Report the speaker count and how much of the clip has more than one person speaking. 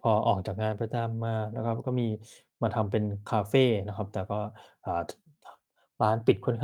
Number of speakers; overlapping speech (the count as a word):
one, no overlap